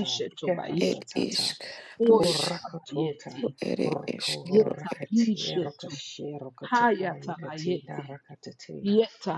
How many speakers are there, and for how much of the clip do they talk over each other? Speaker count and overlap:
3, about 65%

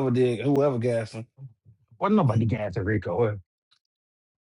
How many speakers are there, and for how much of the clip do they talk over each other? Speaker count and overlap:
2, no overlap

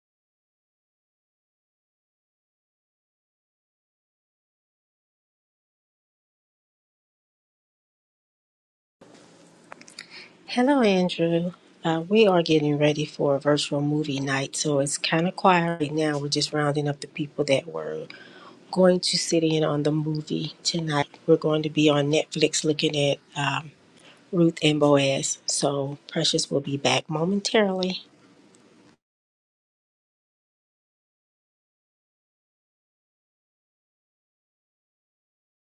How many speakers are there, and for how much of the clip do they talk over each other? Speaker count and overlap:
1, no overlap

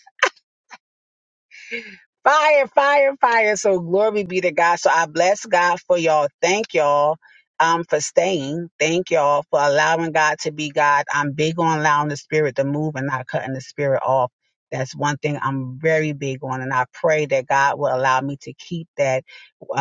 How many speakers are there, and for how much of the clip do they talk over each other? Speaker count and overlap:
1, no overlap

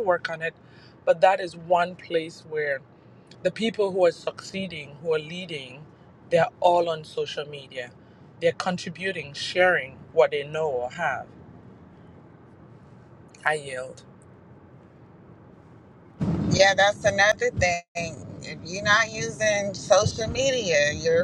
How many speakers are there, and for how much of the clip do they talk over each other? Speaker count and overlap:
2, no overlap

